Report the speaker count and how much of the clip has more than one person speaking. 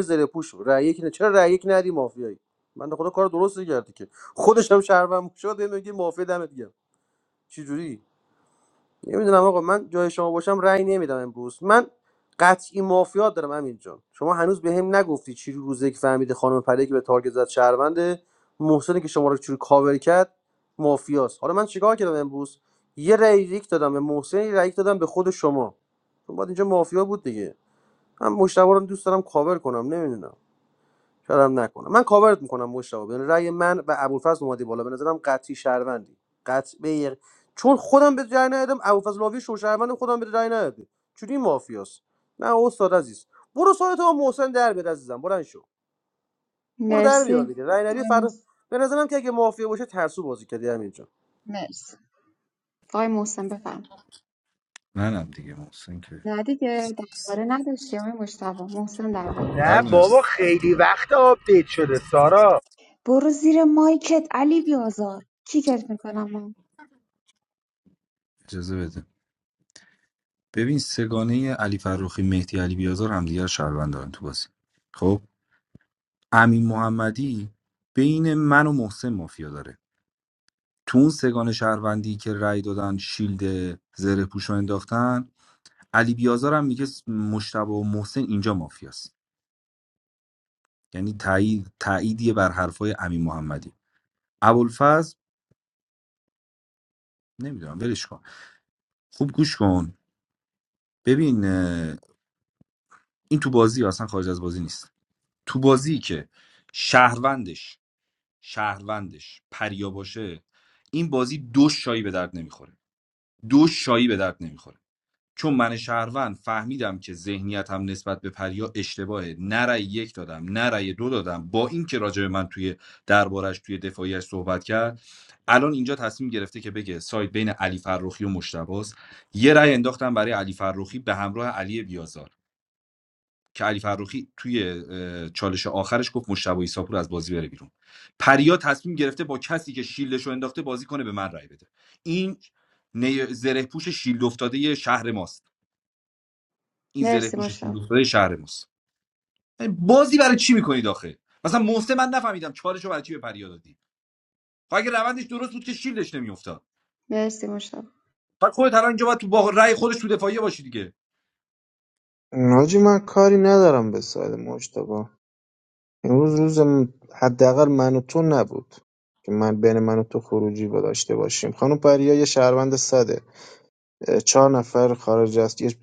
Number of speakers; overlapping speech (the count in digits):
5, about 1%